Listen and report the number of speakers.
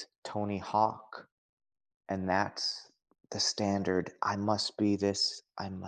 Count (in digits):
1